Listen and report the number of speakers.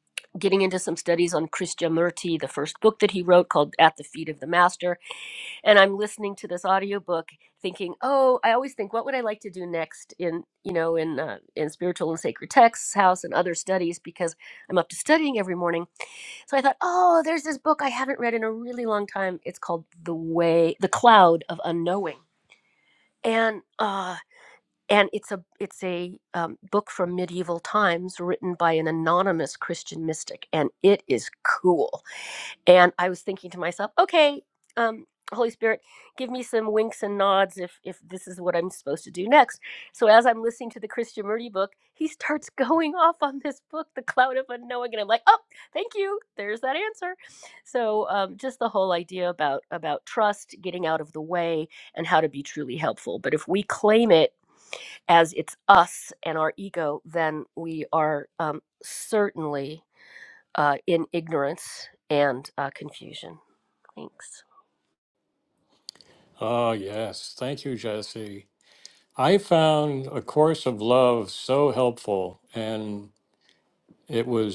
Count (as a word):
two